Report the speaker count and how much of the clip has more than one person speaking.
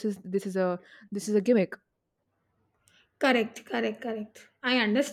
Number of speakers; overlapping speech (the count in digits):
2, no overlap